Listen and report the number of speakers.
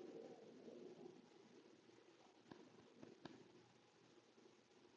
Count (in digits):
0